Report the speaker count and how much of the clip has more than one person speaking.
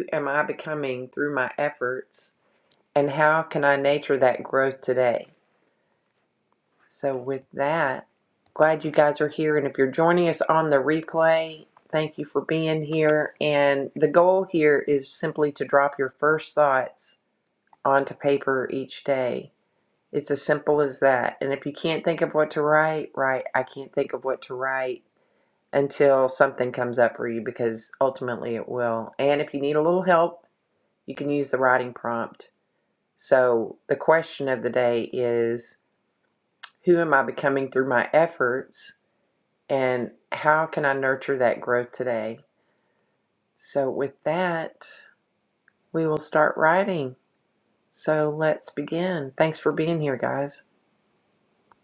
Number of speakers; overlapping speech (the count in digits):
1, no overlap